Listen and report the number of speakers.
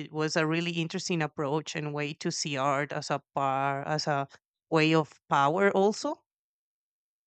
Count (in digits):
1